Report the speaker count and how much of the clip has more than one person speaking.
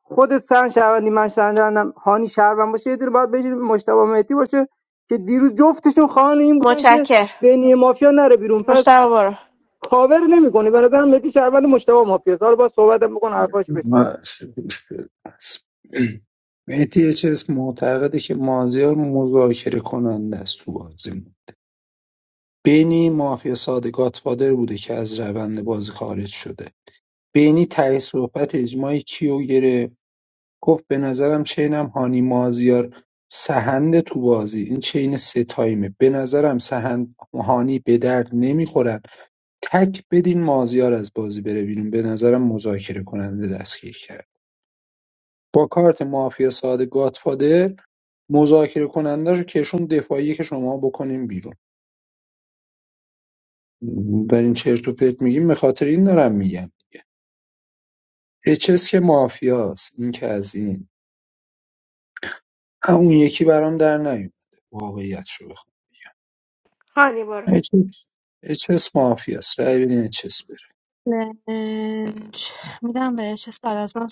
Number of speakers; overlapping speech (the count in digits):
4, about 1%